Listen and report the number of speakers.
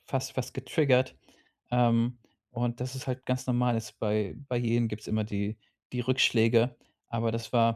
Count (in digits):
1